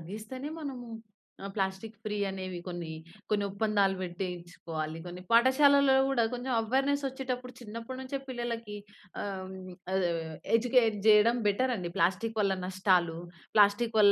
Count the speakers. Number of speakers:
1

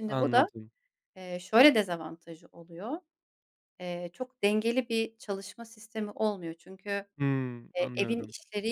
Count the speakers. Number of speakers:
2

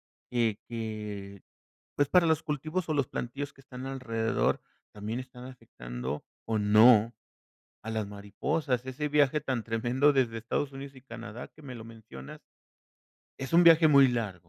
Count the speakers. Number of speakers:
1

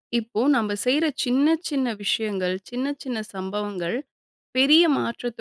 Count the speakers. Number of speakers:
1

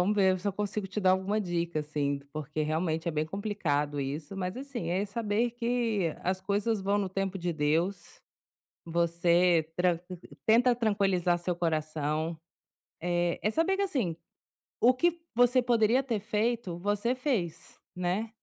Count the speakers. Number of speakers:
1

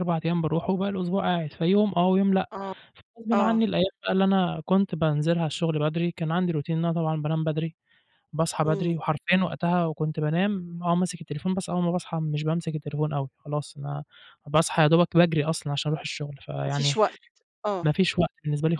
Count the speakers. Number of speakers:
2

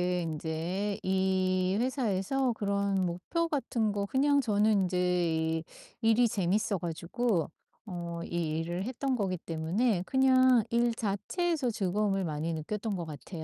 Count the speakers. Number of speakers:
1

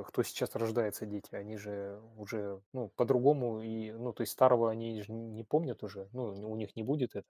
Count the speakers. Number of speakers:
1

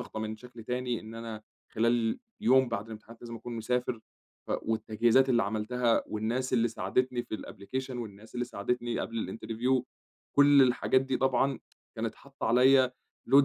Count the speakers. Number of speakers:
1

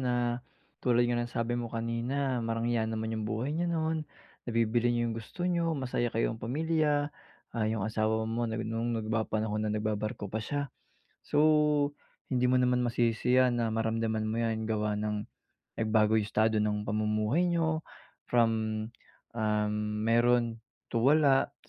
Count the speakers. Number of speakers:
1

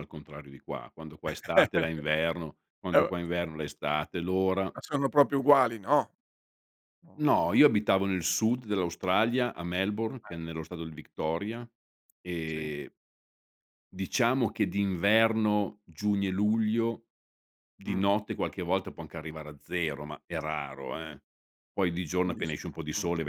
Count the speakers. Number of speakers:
2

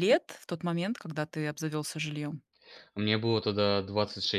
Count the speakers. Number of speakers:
2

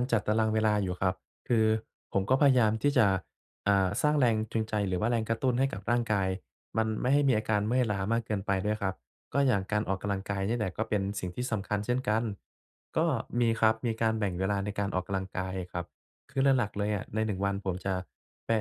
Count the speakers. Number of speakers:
1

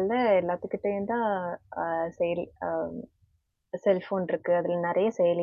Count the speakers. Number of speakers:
1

